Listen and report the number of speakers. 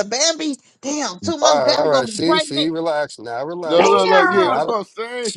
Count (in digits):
3